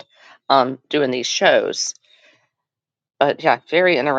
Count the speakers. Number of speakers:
one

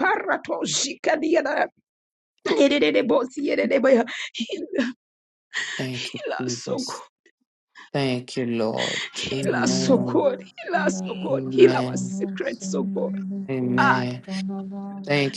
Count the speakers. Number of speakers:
three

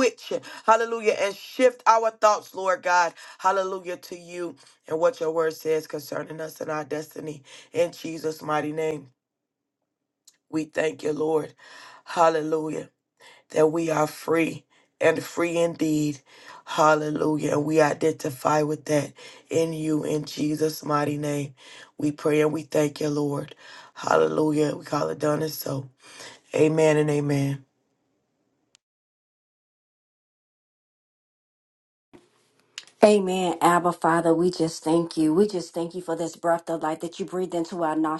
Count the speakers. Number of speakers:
two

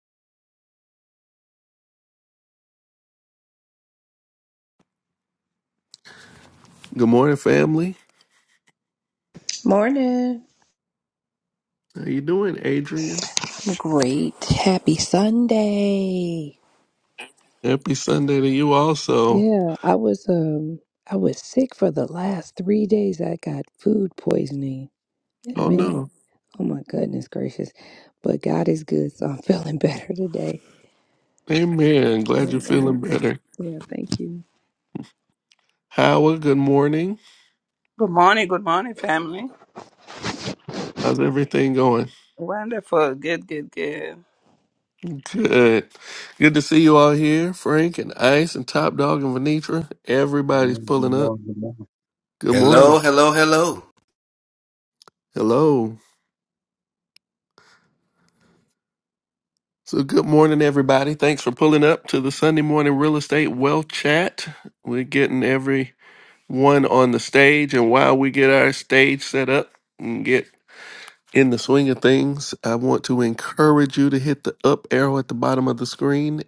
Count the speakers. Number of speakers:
five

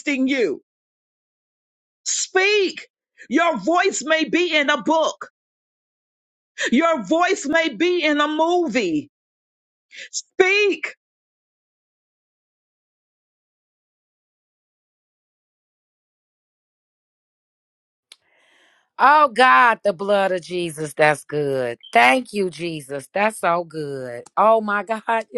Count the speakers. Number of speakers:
two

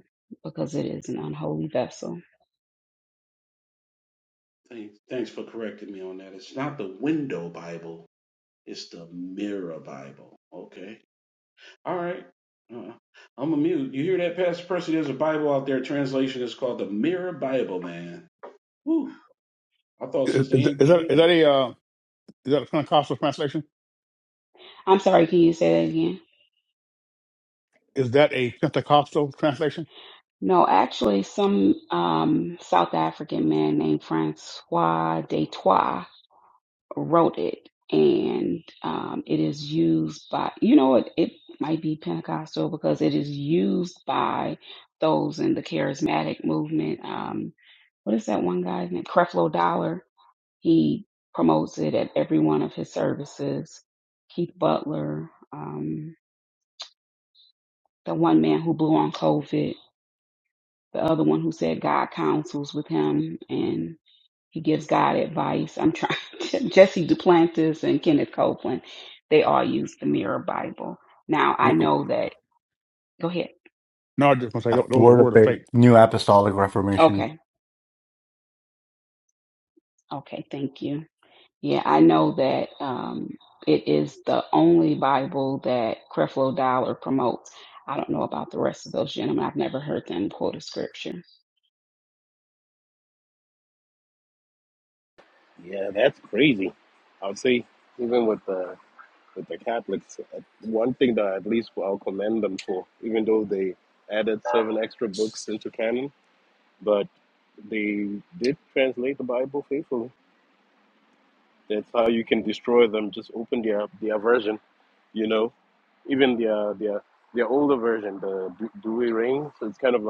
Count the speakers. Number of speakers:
five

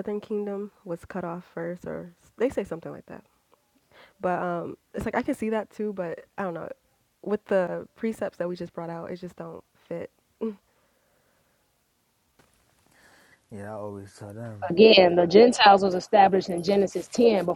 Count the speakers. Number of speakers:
three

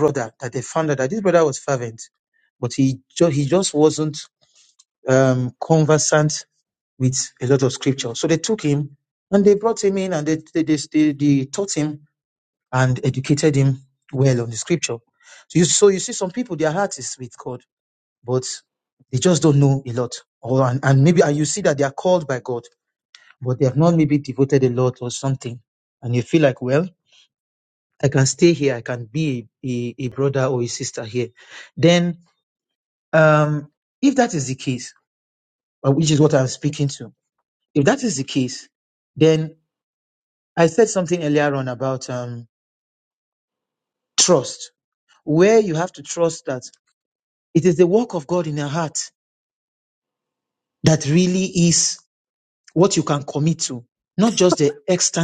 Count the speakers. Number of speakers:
one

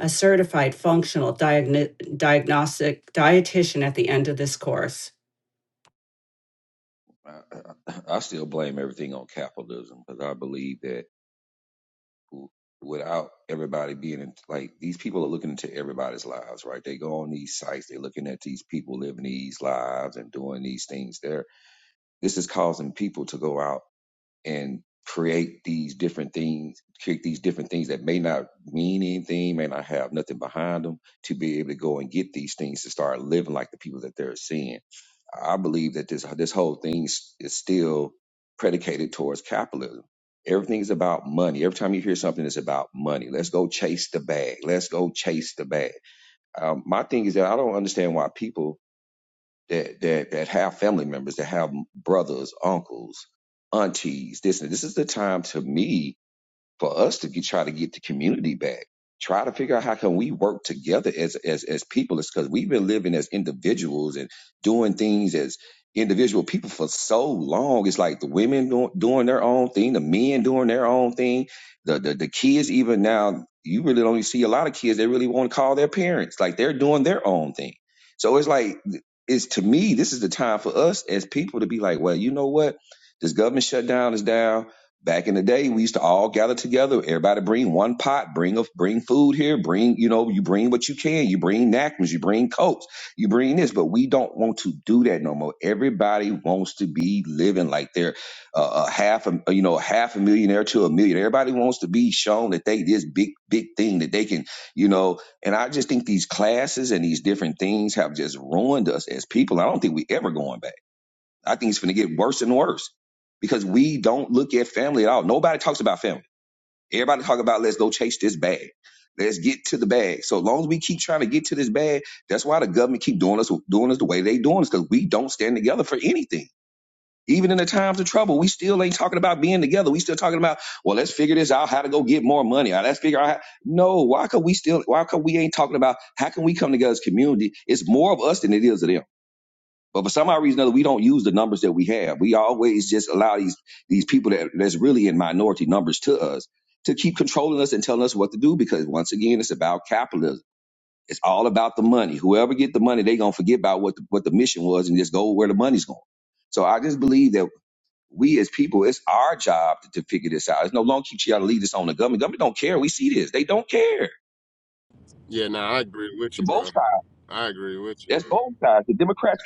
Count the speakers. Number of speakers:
three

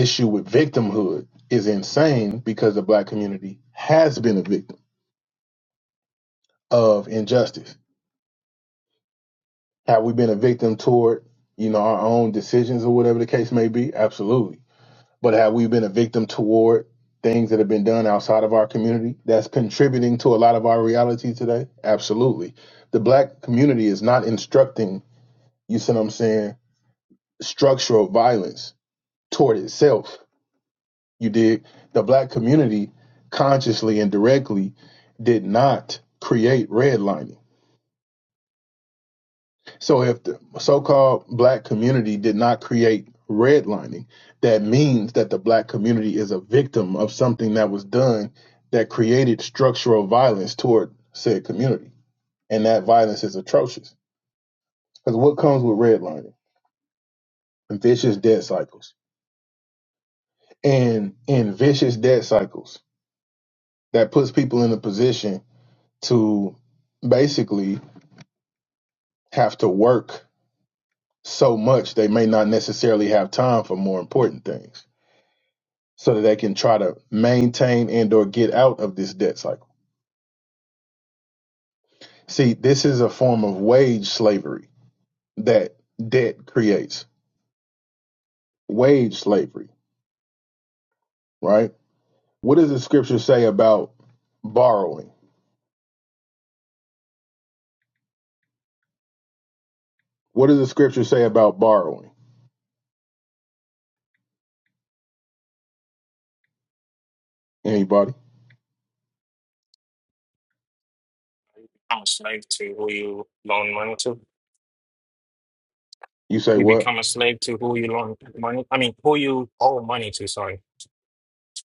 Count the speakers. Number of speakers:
two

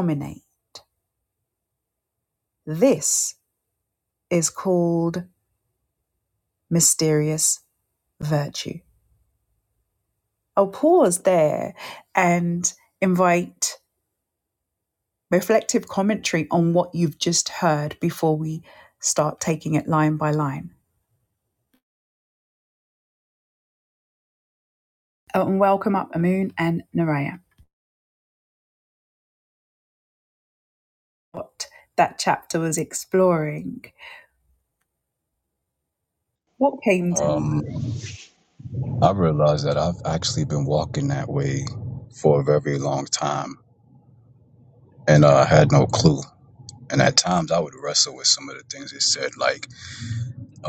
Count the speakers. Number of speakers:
two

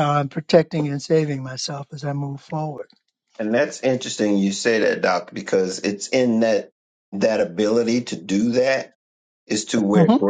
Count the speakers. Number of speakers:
two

